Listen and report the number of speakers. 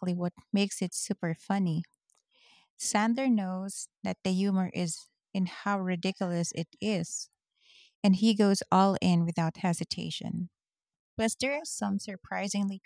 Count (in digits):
1